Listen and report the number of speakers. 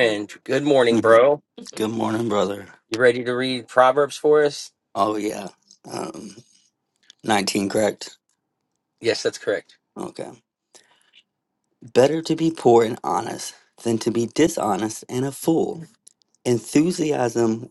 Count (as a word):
two